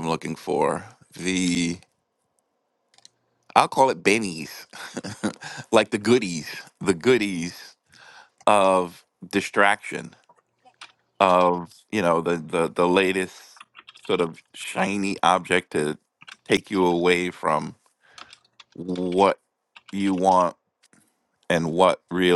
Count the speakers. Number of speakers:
1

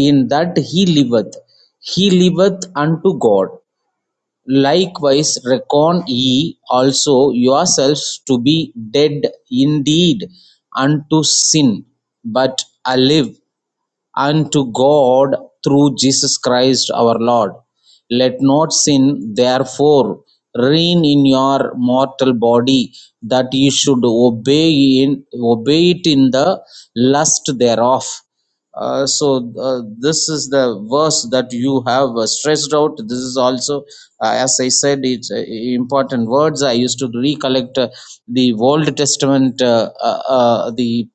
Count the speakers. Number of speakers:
1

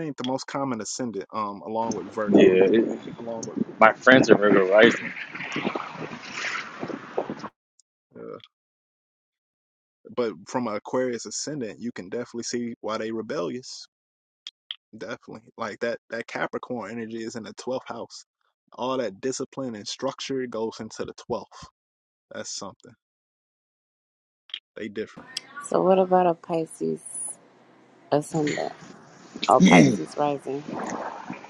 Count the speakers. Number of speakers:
3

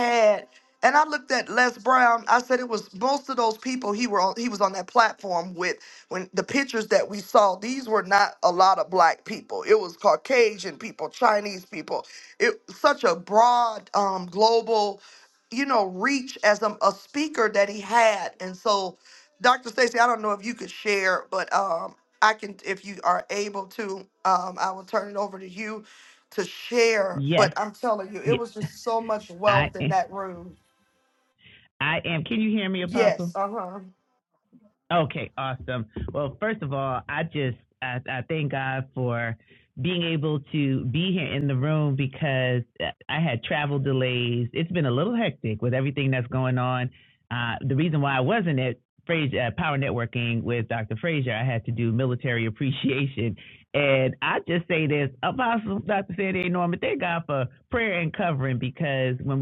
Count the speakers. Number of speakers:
2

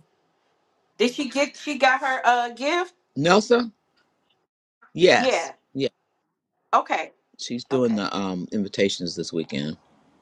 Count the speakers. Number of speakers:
2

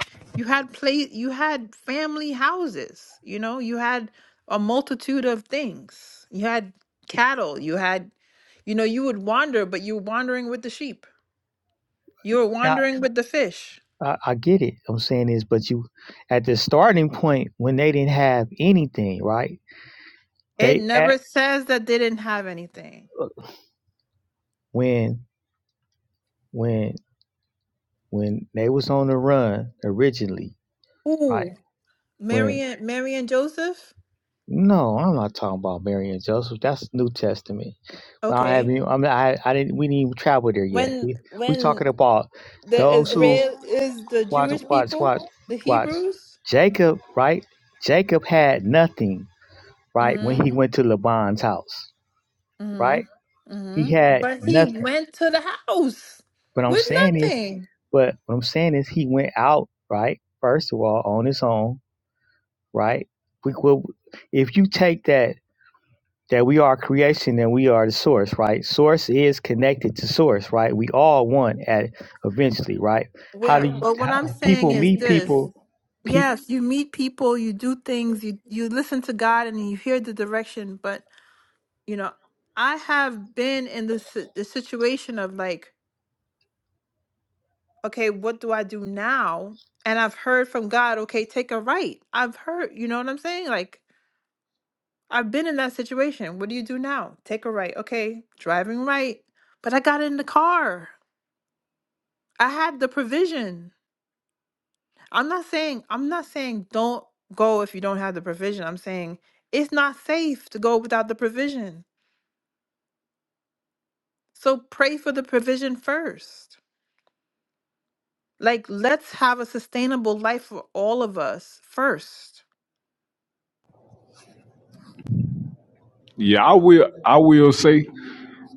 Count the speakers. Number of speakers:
3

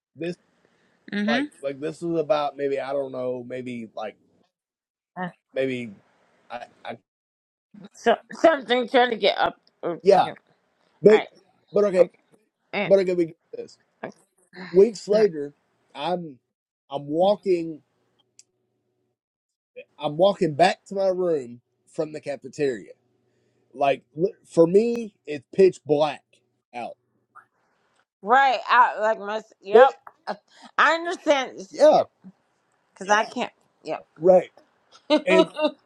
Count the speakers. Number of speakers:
2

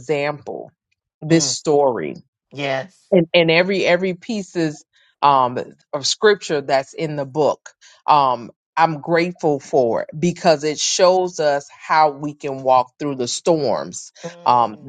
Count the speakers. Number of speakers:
2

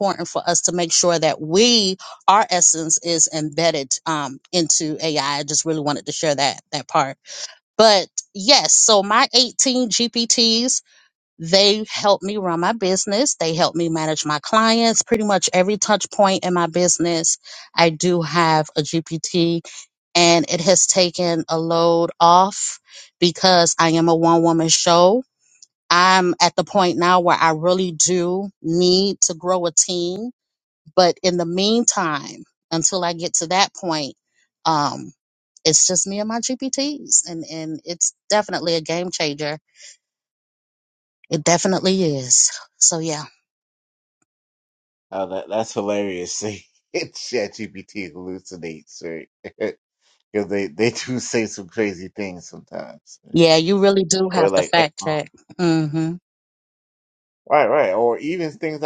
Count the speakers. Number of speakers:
2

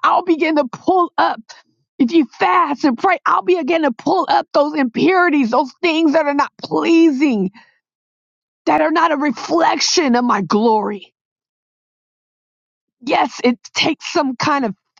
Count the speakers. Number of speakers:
1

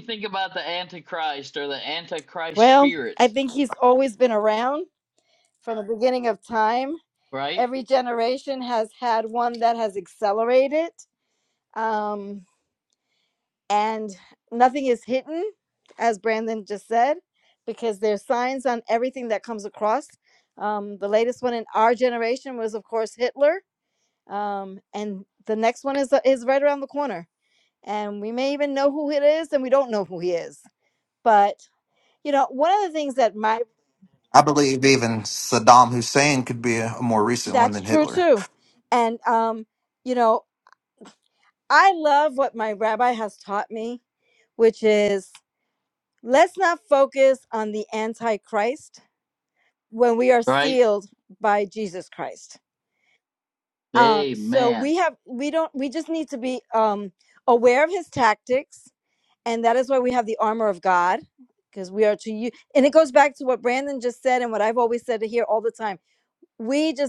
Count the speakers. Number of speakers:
3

